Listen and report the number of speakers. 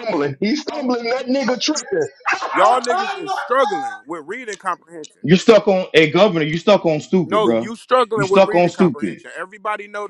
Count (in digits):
3